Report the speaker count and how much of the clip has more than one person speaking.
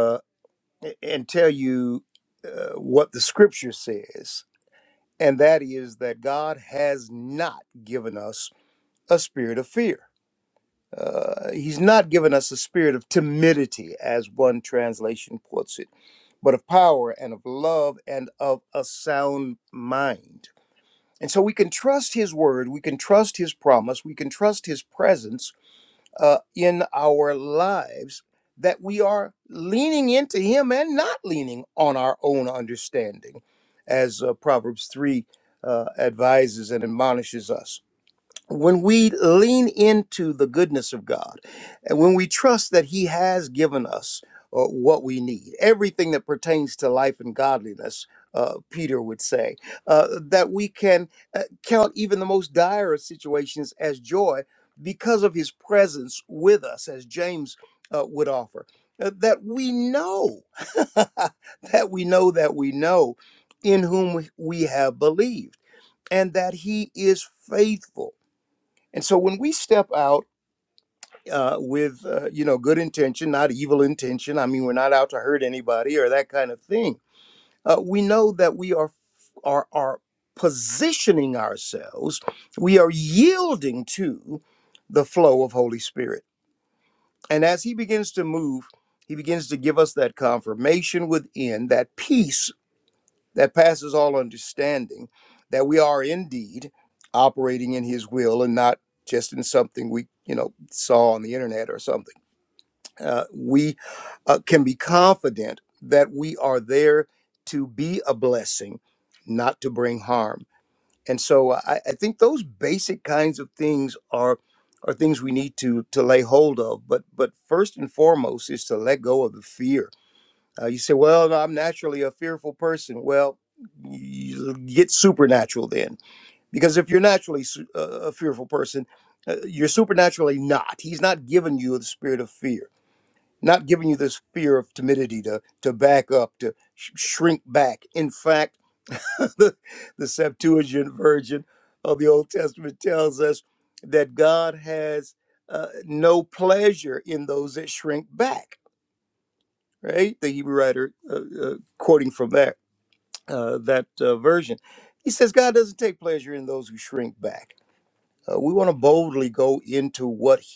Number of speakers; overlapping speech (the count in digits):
1, no overlap